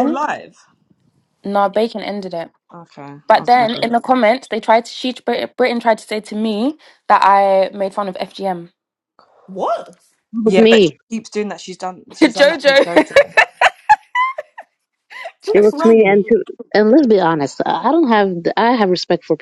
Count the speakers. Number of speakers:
4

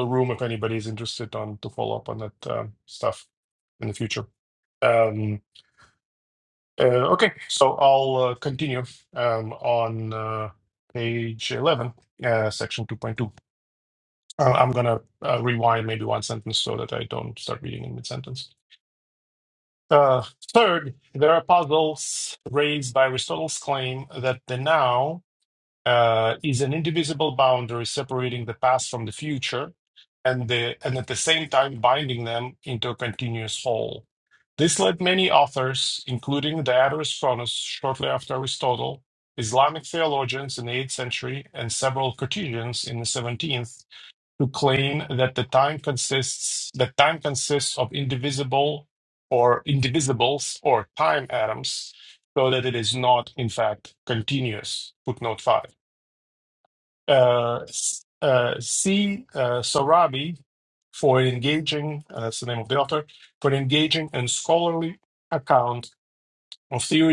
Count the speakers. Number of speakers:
1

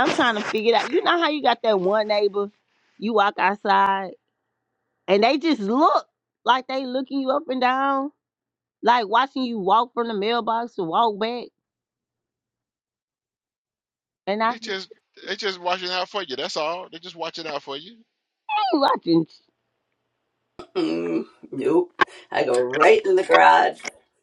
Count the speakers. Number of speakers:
3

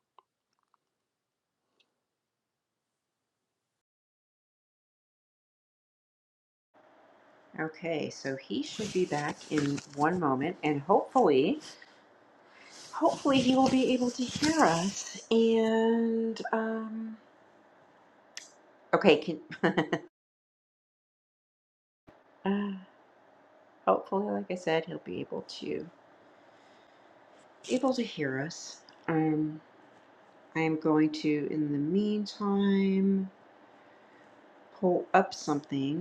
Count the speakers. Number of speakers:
1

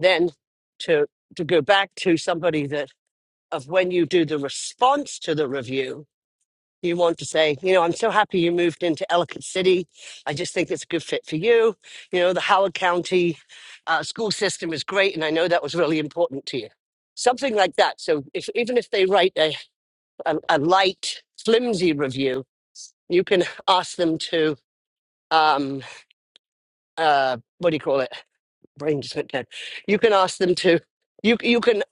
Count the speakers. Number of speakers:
1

